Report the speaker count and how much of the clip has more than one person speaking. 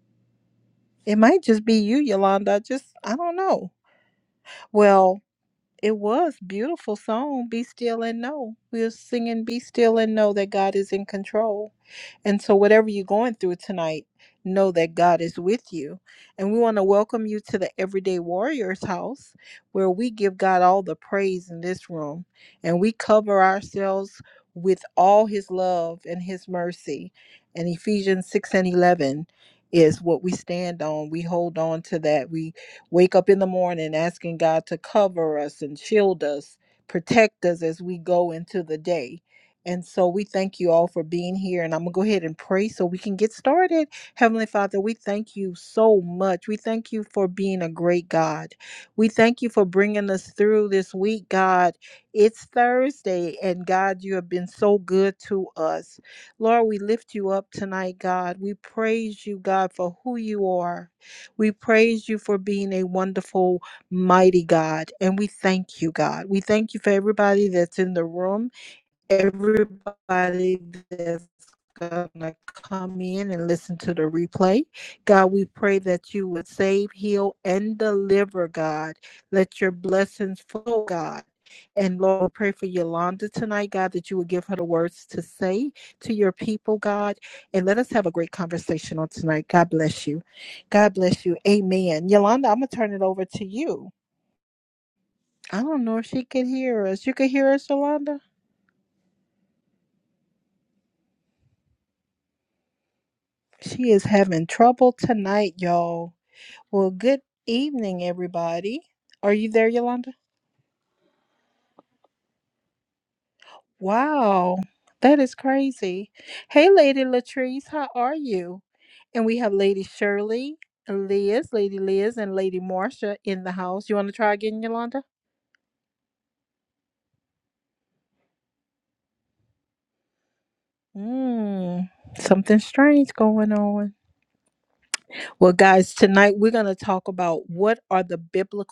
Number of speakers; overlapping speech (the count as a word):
one, no overlap